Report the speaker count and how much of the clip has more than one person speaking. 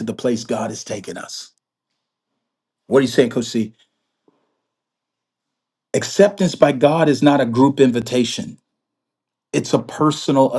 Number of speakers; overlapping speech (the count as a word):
one, no overlap